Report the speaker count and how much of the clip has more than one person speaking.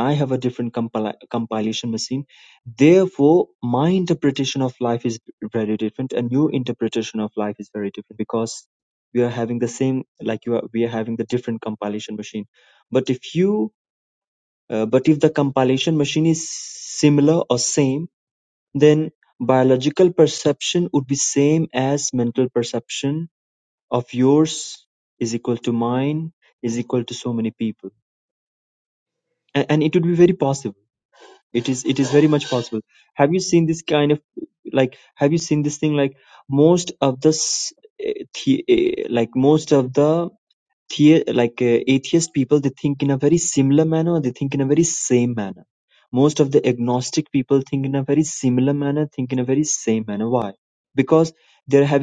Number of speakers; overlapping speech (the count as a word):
one, no overlap